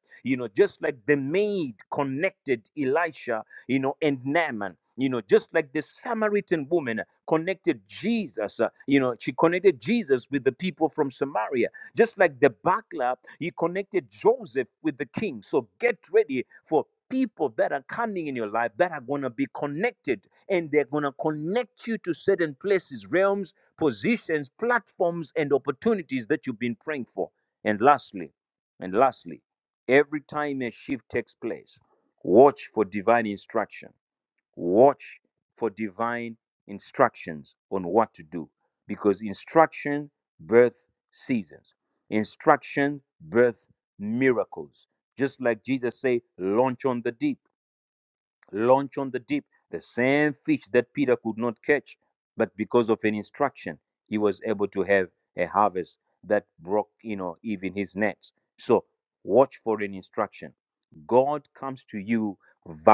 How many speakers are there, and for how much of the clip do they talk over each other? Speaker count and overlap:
one, no overlap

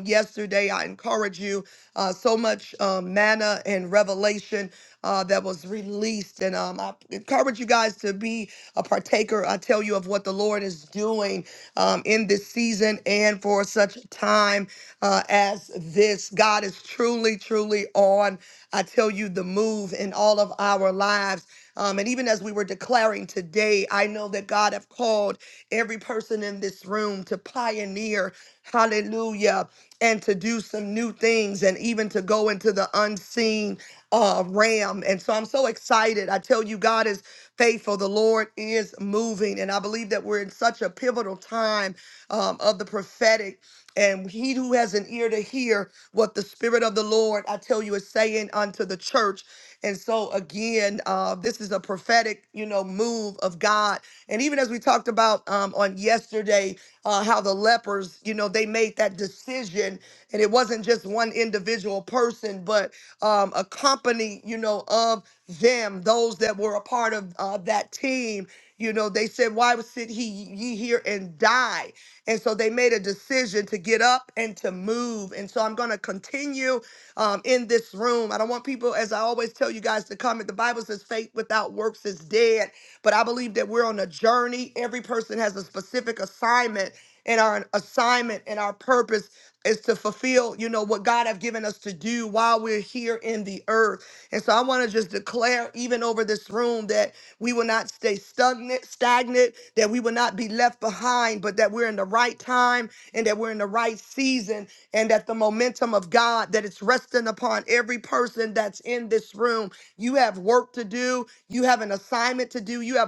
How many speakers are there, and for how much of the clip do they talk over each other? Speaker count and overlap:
one, no overlap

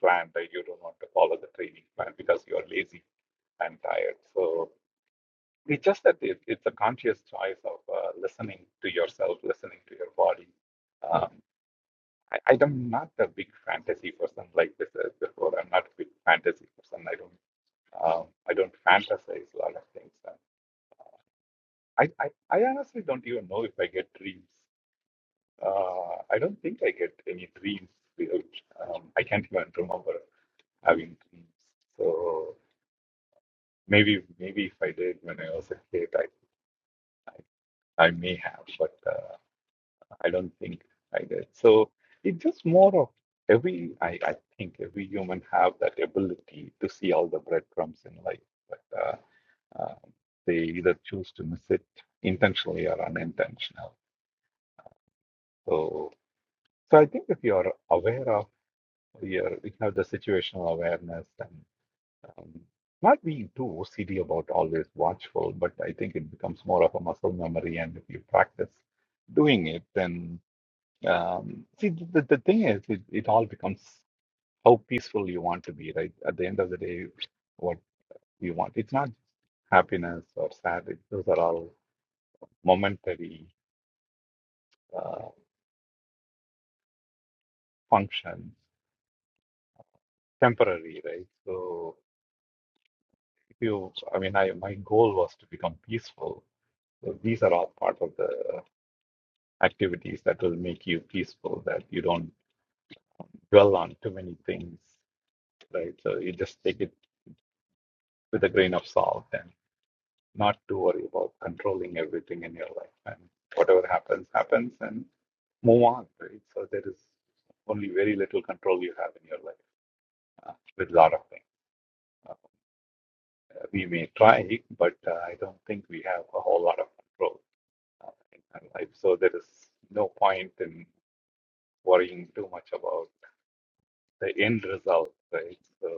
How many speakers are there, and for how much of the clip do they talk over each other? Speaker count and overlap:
one, no overlap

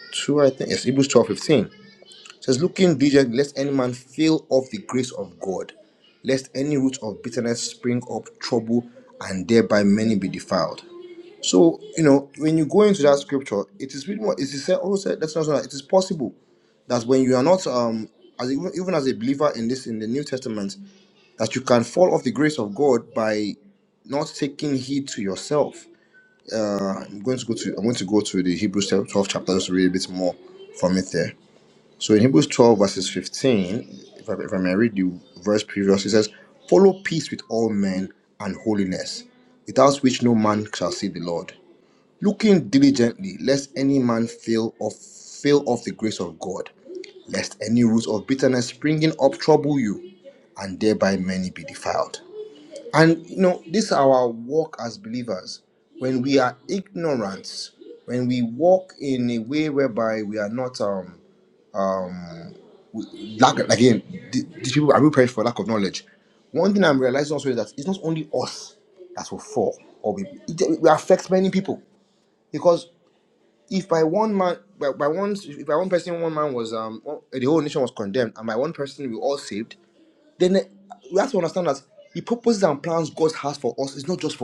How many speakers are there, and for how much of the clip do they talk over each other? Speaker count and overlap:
one, no overlap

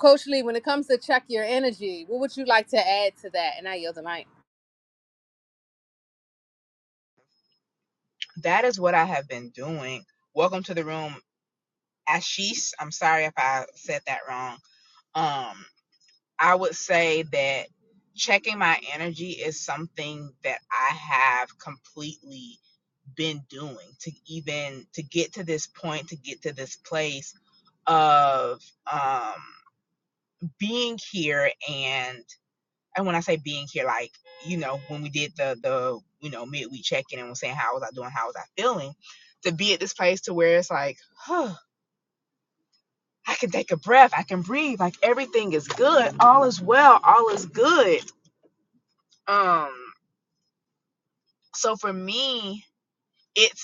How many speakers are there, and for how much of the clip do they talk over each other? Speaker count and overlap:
two, no overlap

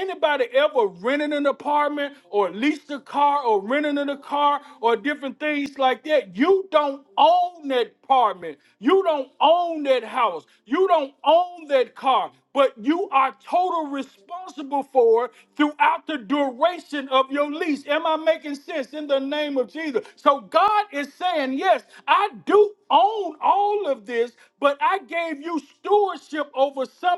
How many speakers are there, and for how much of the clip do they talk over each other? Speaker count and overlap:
one, no overlap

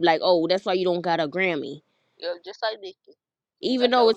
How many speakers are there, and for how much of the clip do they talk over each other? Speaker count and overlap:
two, about 13%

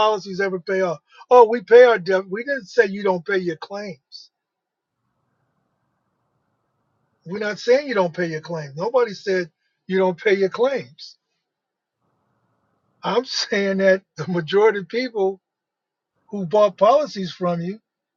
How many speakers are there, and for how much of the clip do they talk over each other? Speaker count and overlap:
one, no overlap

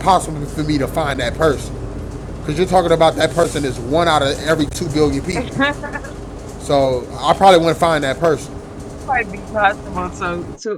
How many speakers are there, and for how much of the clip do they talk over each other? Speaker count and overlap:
two, about 1%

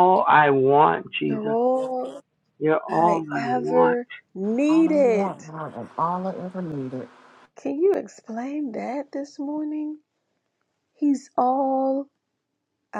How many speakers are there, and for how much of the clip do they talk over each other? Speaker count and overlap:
three, about 15%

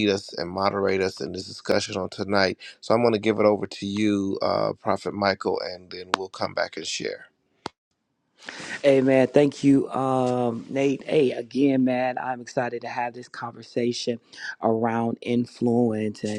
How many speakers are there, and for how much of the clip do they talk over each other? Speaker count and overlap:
two, no overlap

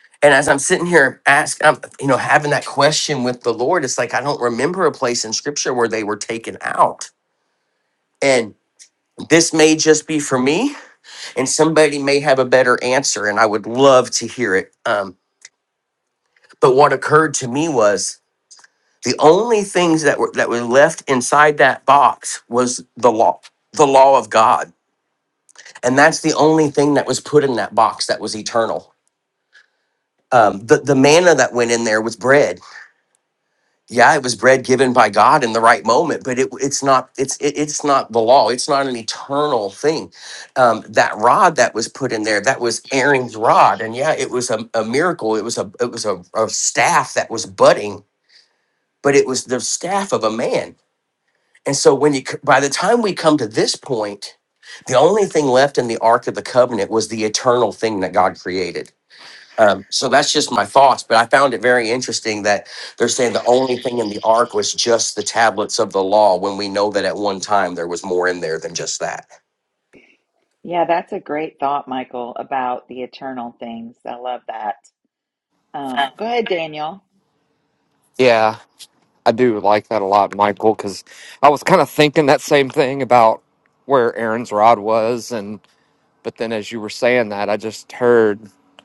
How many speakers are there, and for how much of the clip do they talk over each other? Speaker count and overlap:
three, no overlap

